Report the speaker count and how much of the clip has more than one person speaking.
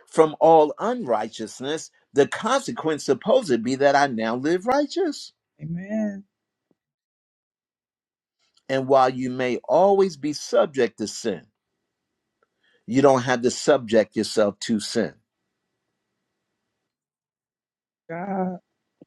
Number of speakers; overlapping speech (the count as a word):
two, no overlap